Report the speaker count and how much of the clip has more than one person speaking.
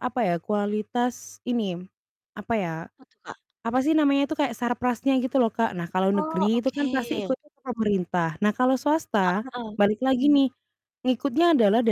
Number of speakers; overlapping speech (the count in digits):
2, about 12%